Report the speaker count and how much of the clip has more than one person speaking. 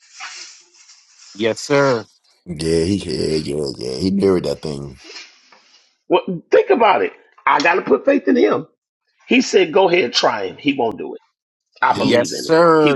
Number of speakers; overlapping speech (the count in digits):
3, about 8%